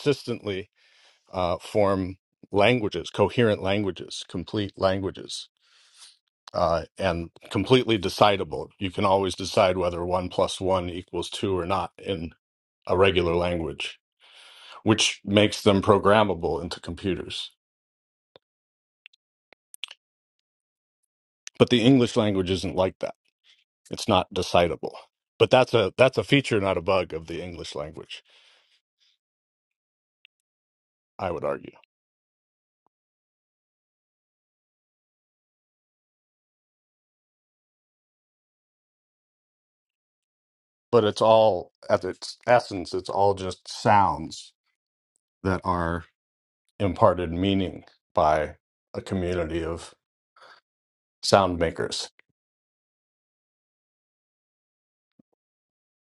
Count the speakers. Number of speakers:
one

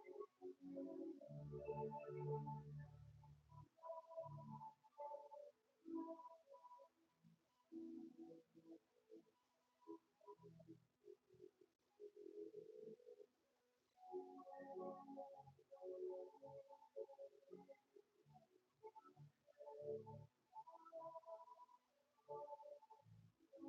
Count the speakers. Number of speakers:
zero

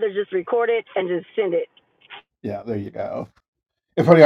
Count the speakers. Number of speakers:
two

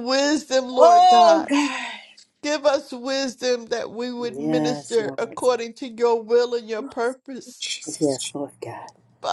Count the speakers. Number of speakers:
three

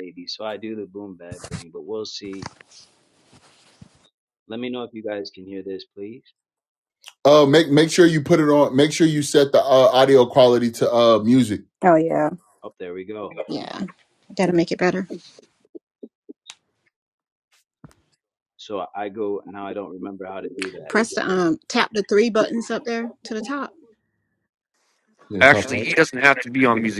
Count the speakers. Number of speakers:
four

